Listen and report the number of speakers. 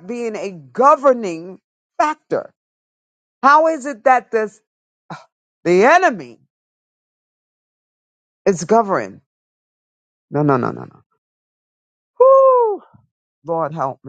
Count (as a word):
one